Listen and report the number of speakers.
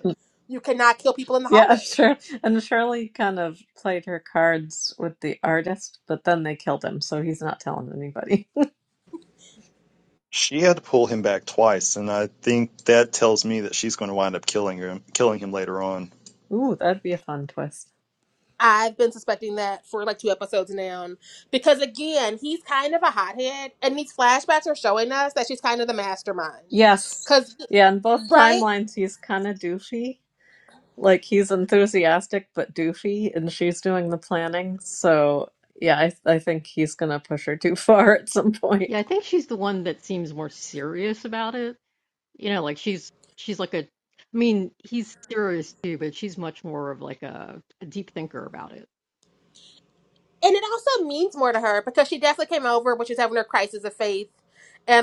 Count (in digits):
4